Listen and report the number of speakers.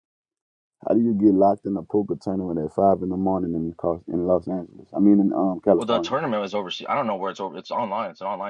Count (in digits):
2